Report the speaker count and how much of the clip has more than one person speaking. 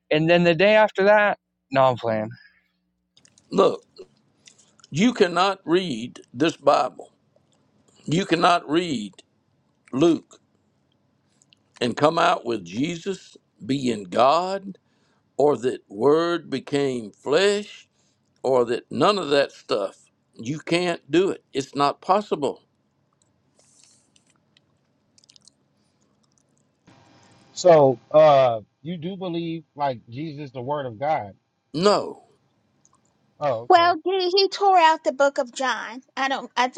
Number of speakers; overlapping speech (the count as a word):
four, about 1%